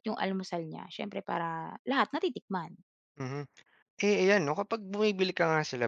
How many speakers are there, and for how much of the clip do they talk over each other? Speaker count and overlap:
2, no overlap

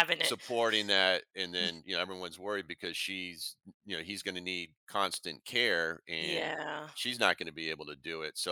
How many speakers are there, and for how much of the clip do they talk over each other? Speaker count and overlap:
2, about 6%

